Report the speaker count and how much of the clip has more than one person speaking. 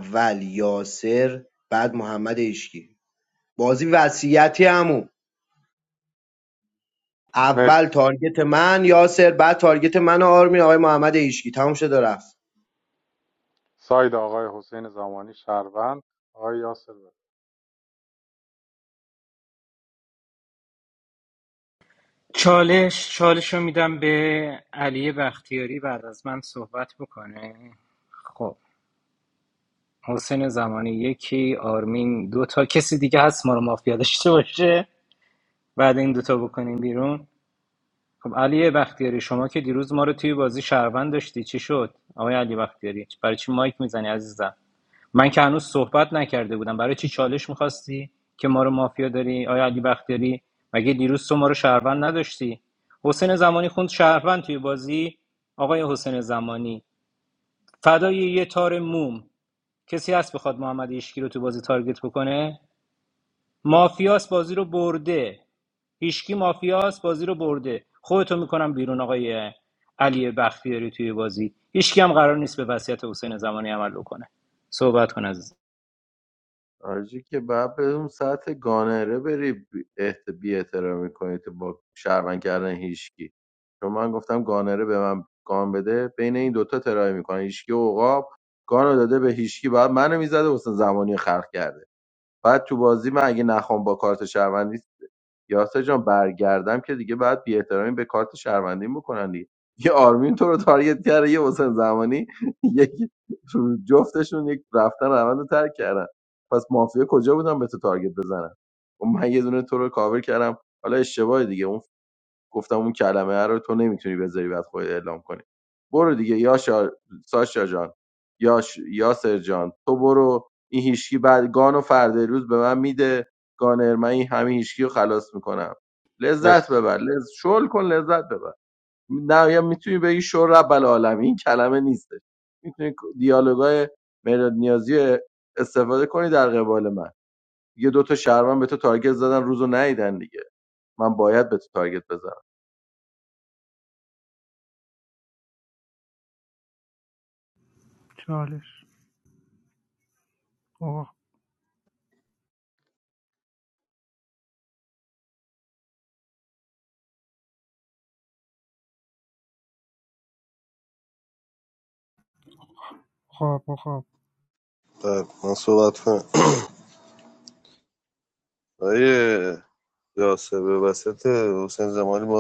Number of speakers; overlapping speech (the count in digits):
6, under 1%